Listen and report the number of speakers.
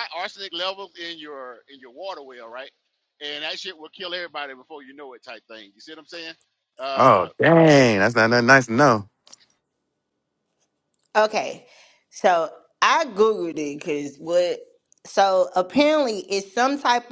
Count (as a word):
three